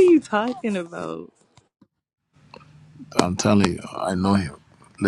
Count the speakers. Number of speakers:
2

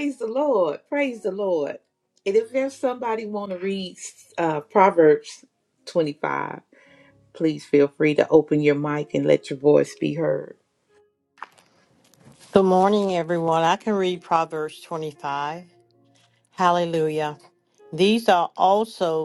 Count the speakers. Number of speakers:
2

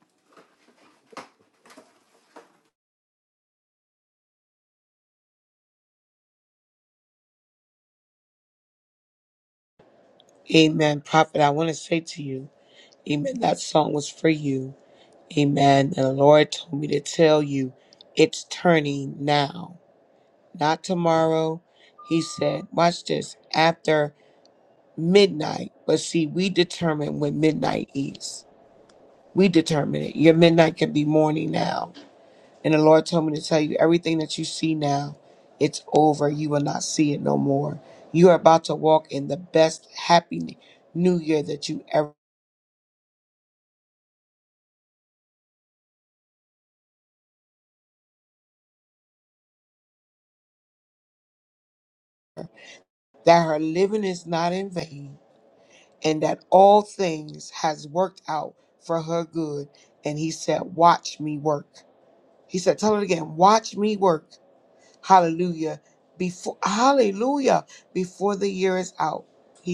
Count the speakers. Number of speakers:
1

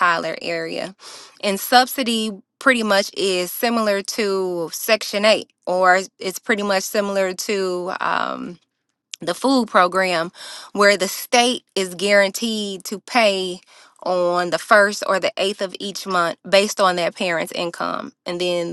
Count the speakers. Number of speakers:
1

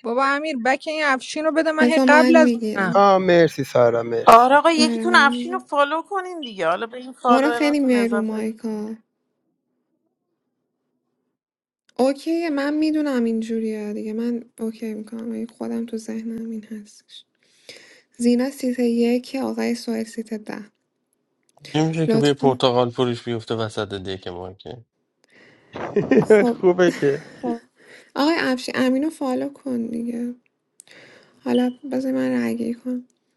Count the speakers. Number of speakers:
5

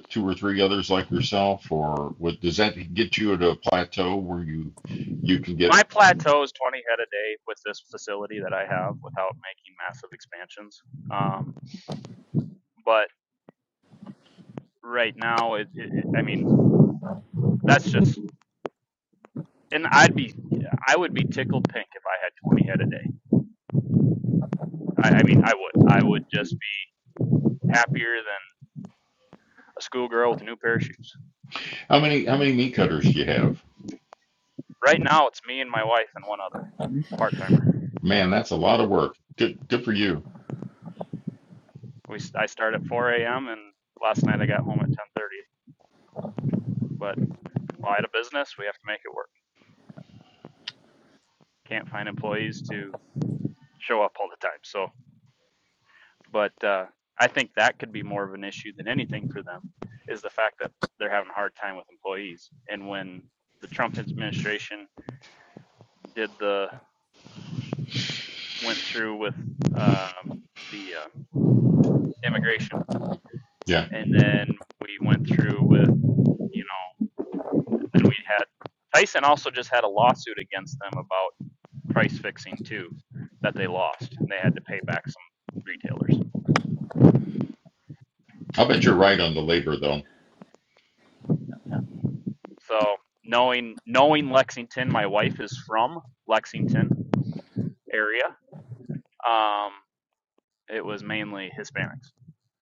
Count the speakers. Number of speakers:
2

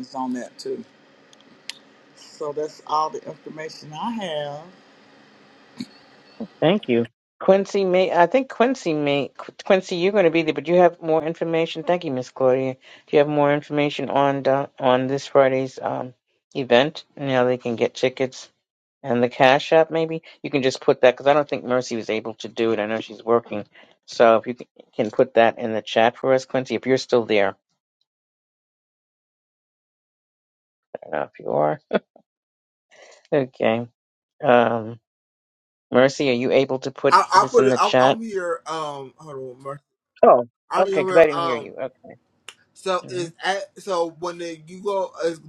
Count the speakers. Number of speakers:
3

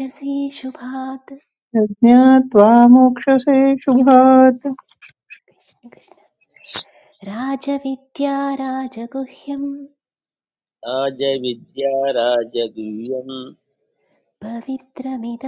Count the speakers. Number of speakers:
3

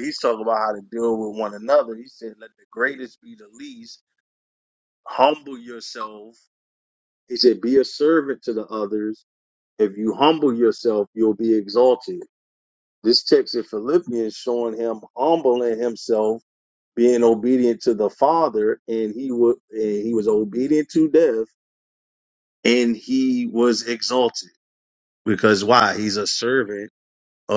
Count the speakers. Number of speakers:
1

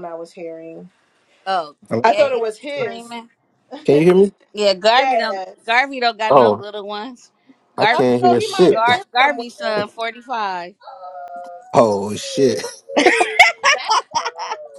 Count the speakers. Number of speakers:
3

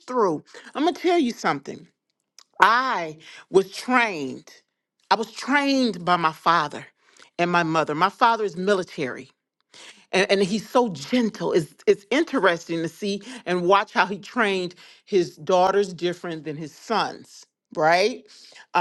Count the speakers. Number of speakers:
1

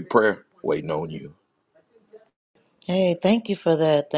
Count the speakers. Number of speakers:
2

